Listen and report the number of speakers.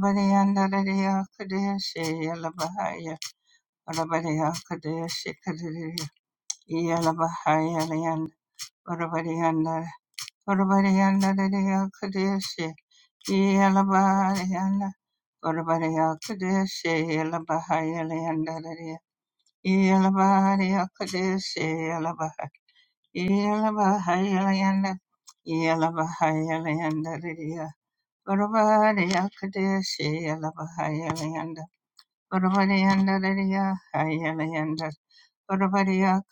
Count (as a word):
one